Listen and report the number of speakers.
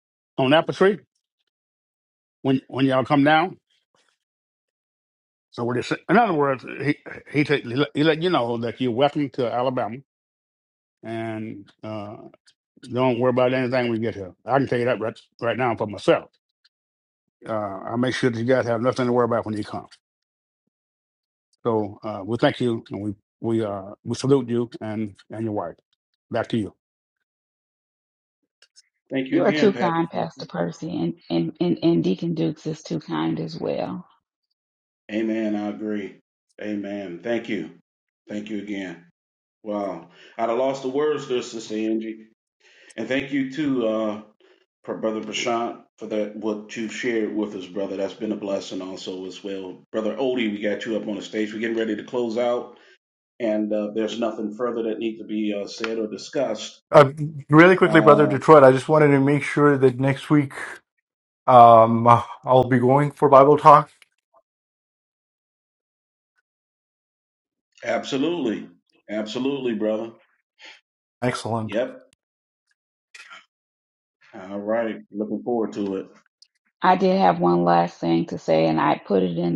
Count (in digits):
4